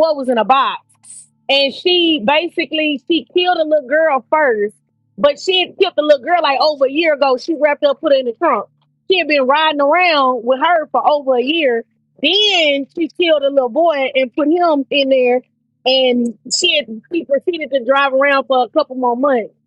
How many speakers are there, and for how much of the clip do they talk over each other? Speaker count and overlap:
one, no overlap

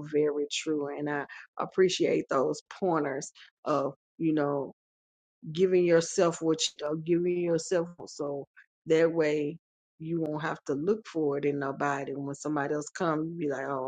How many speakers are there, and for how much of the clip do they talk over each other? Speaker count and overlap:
one, no overlap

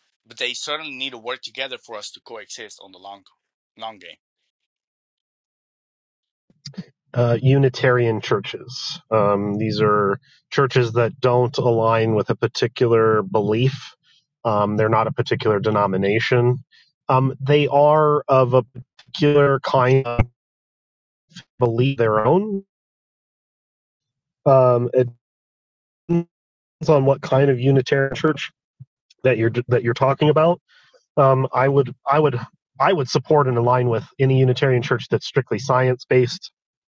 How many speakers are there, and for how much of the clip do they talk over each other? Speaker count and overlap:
two, no overlap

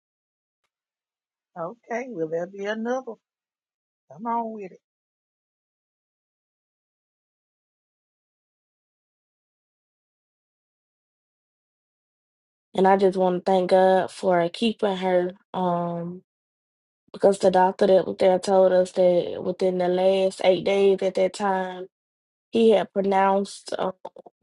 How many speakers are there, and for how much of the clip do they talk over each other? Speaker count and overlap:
two, no overlap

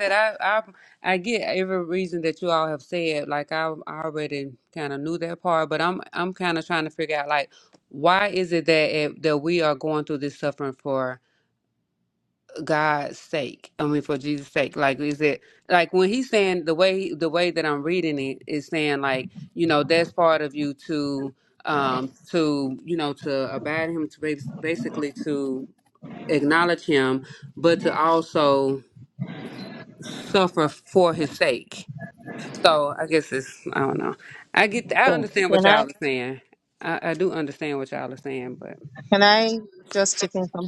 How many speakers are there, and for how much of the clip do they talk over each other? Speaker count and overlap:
two, about 2%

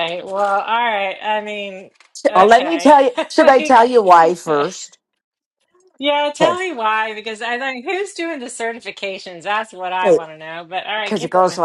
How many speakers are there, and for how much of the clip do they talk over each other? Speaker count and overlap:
two, about 18%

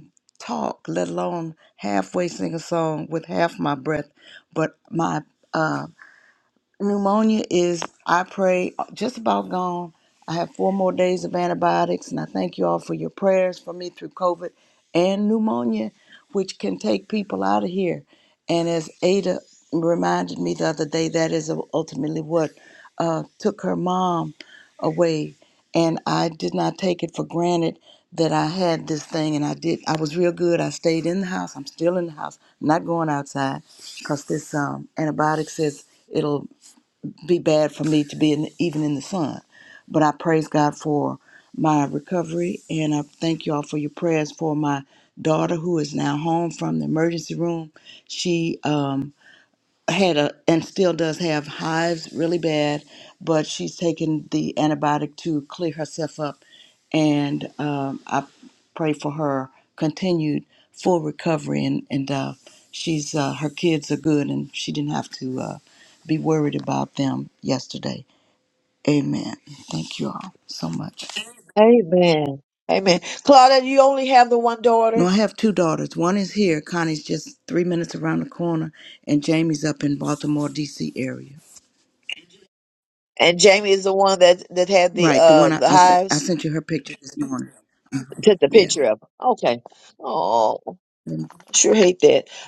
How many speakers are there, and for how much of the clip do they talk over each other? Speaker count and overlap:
two, about 2%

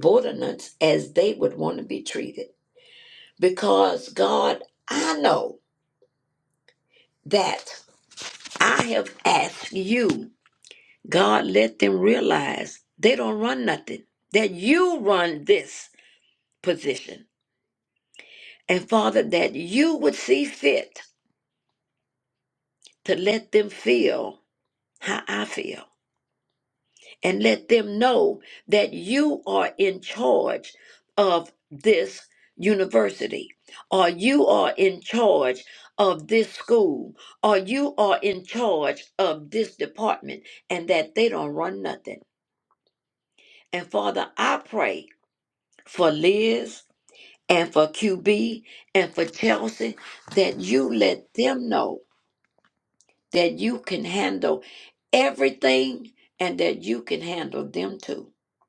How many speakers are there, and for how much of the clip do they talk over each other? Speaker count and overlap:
one, no overlap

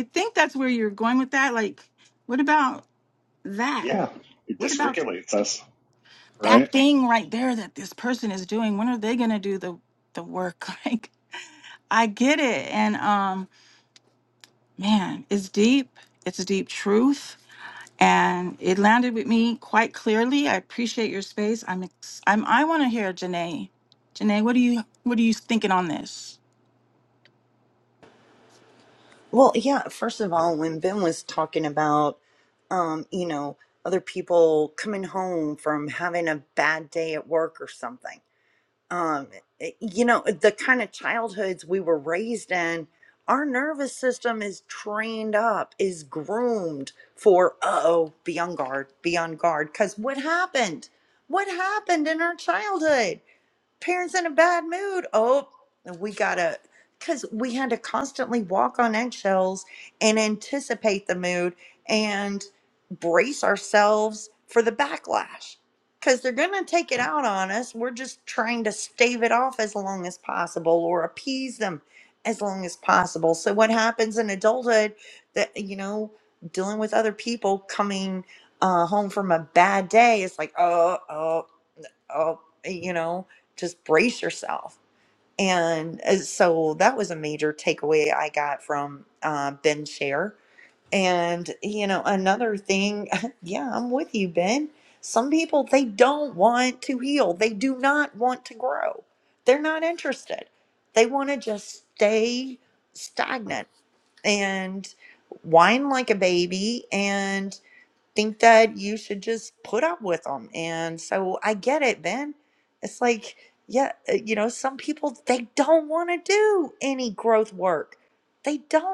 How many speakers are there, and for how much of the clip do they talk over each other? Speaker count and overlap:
three, about 1%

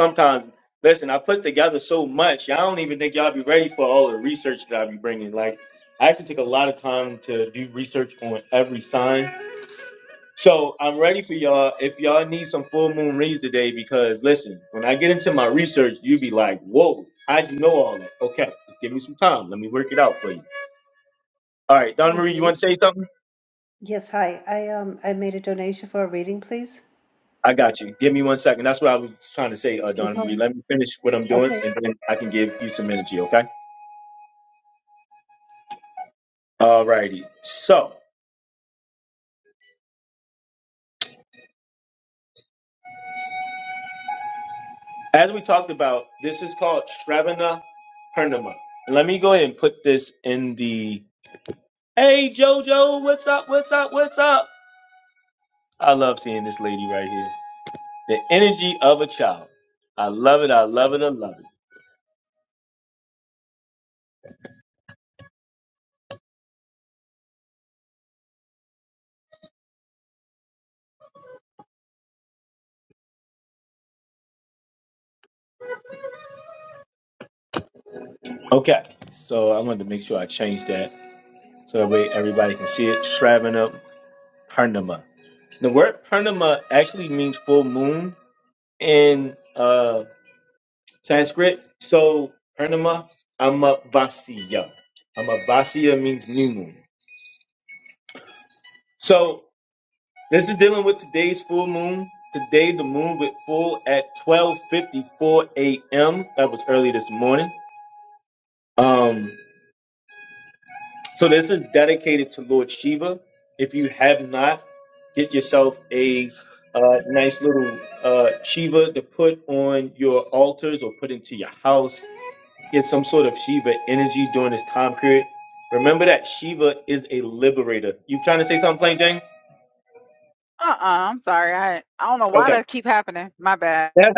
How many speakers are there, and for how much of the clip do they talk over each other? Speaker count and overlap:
three, about 1%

